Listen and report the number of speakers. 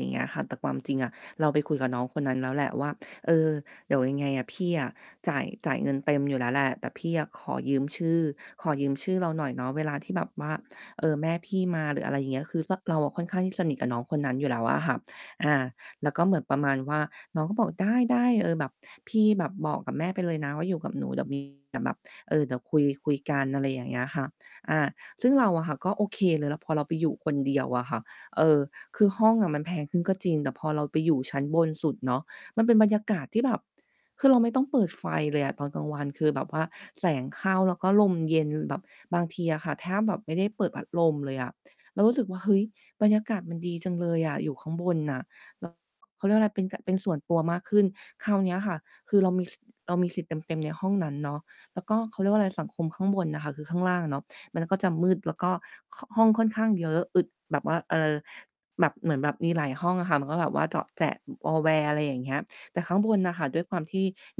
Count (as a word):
one